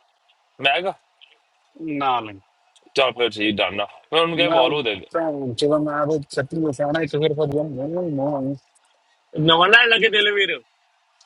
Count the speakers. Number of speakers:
3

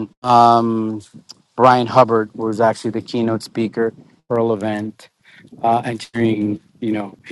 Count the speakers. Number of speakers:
1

